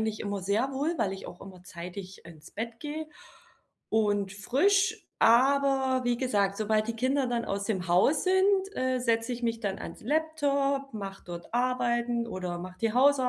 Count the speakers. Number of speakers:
1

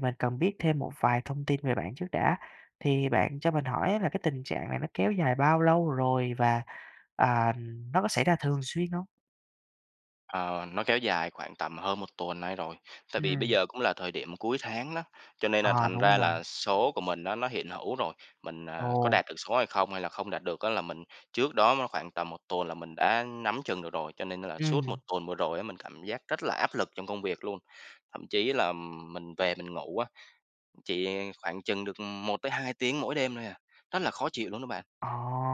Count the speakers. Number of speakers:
2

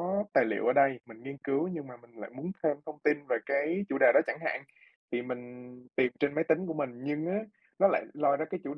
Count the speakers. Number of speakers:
1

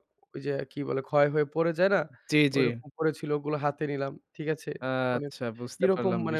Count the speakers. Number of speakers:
2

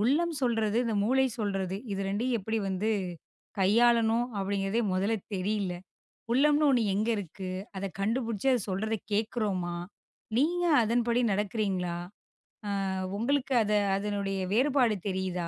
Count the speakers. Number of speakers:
1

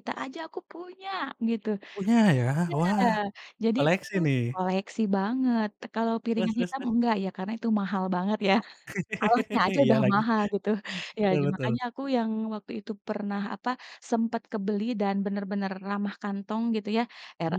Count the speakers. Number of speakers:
2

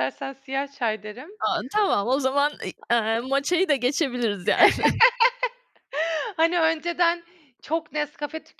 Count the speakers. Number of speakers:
2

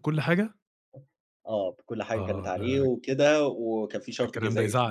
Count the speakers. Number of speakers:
2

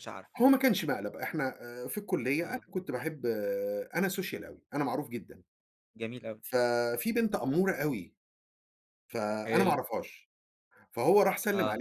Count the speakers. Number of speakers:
2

